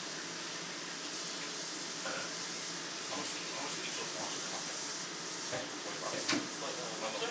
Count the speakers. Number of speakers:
1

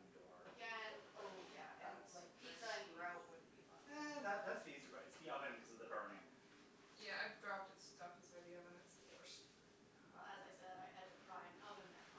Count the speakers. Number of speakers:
3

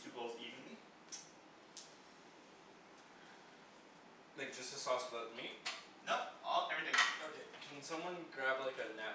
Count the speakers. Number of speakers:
2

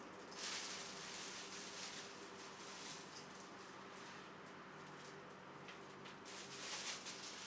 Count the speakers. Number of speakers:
0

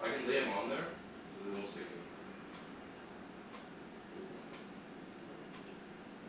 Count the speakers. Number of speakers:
1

